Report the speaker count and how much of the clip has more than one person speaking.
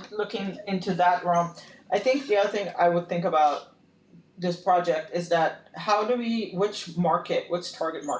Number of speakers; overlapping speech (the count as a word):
one, no overlap